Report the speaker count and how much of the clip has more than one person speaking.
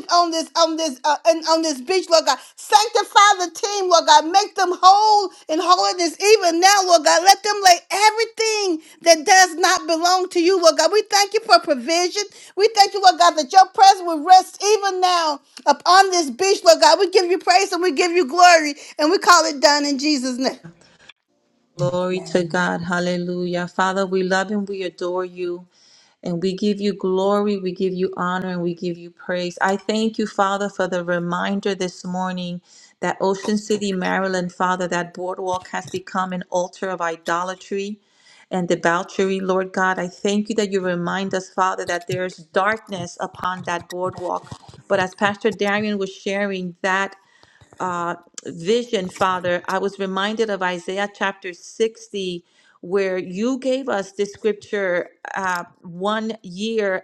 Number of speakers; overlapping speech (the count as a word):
two, no overlap